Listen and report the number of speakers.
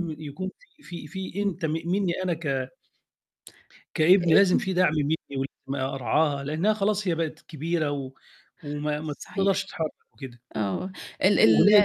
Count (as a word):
two